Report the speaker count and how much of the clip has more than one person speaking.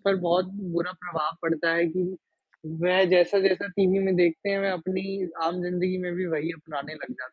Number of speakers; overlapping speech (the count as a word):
one, no overlap